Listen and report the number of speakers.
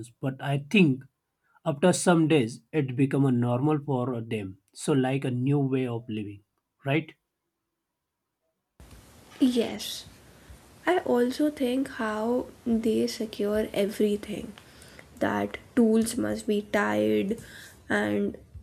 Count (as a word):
two